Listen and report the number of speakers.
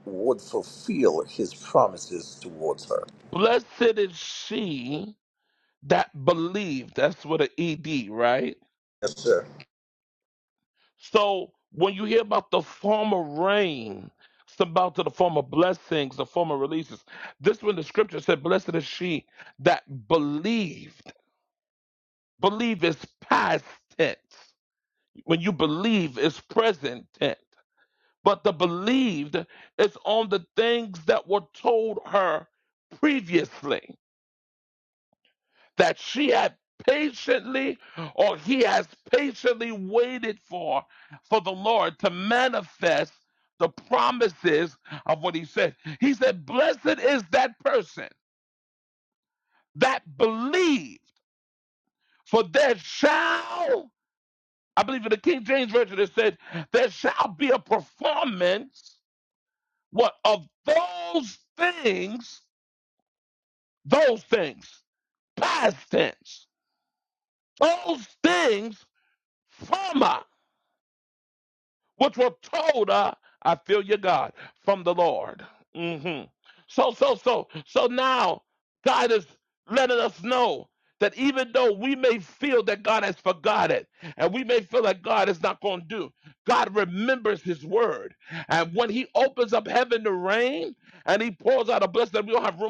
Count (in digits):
2